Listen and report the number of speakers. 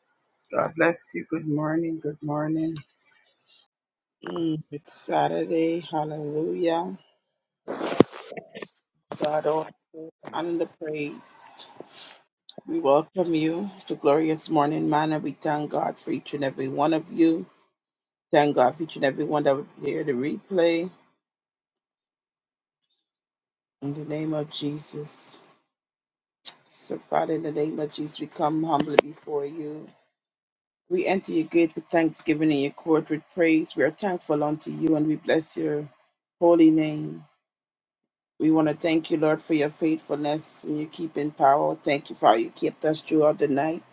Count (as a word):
one